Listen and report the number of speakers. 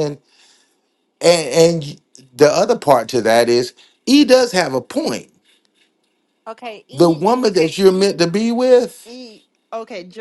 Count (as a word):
two